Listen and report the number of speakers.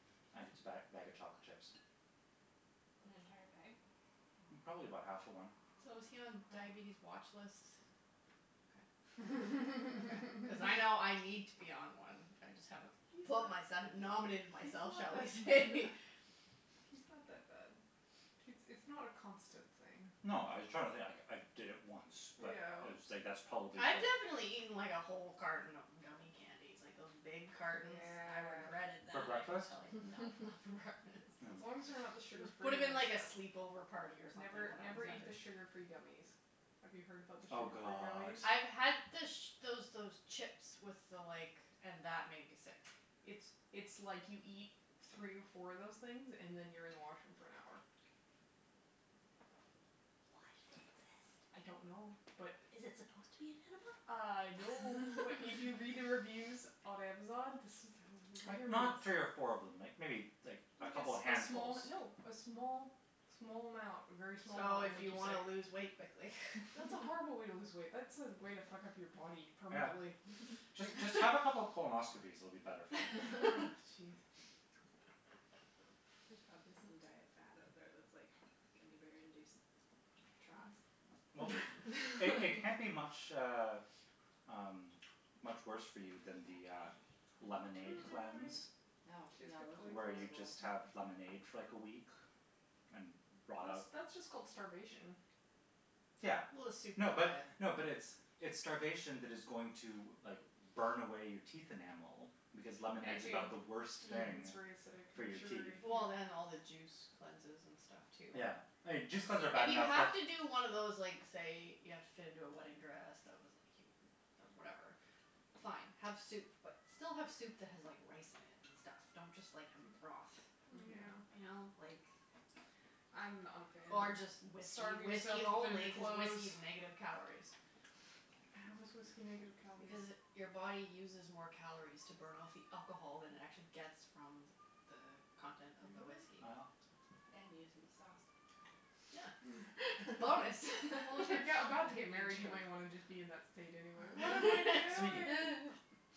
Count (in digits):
4